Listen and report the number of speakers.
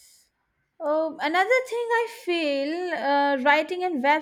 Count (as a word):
one